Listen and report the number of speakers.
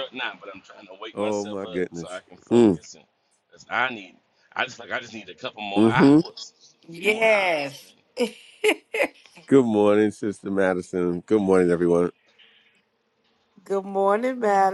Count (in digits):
3